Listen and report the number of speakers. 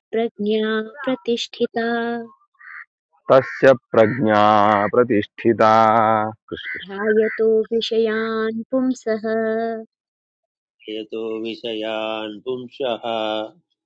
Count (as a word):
three